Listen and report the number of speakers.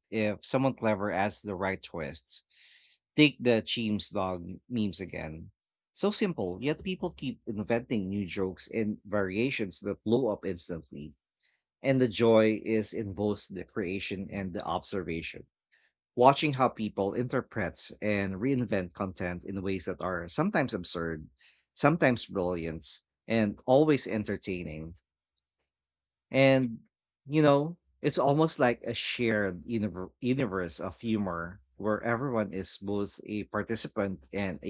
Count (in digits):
1